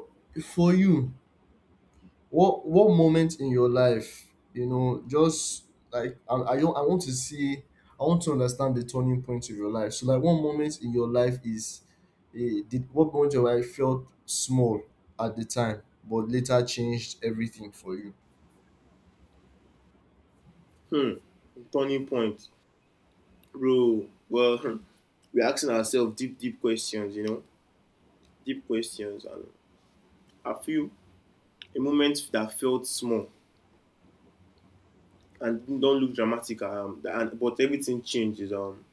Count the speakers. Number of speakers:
2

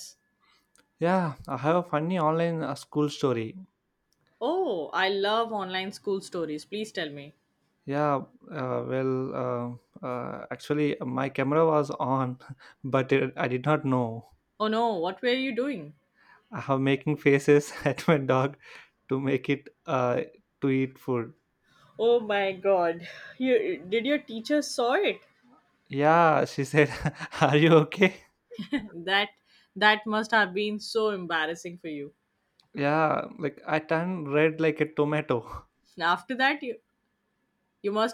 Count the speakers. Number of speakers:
2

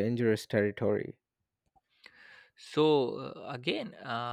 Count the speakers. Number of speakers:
2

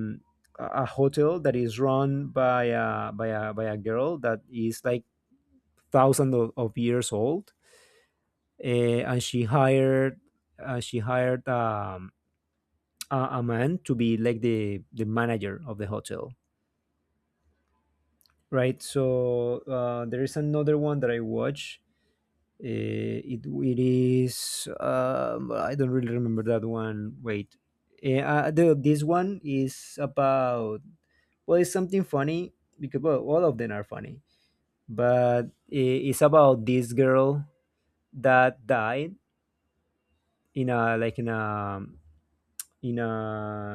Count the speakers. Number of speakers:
1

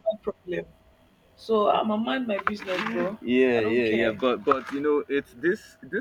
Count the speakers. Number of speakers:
2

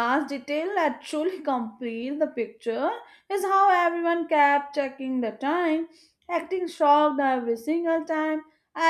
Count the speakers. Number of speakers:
1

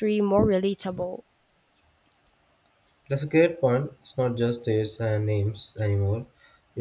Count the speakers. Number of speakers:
2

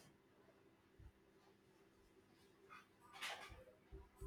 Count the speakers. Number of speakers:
0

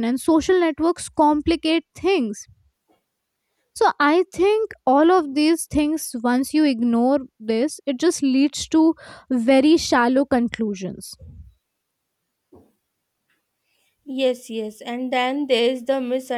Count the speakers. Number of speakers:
2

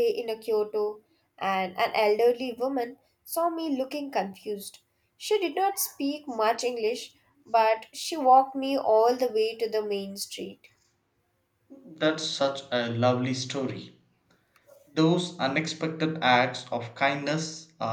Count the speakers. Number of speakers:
2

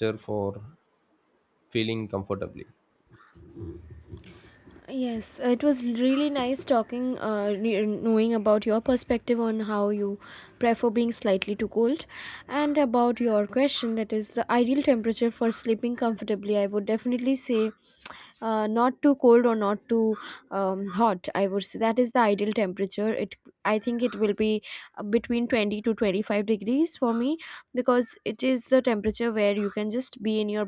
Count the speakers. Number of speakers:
2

